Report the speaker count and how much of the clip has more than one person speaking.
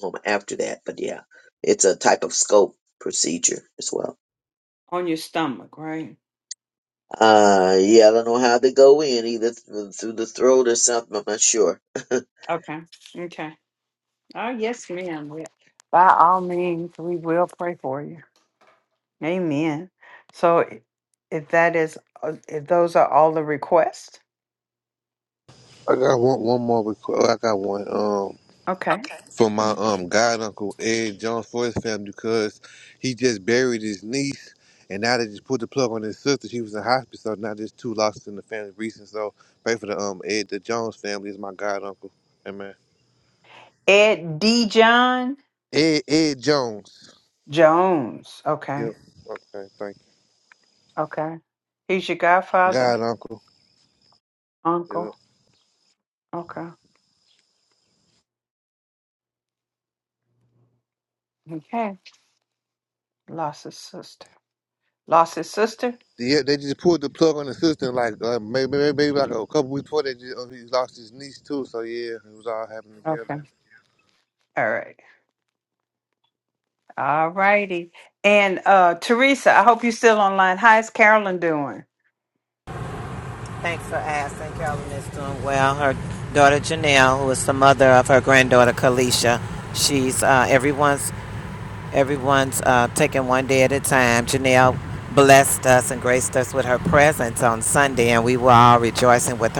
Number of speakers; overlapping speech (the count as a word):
four, about 1%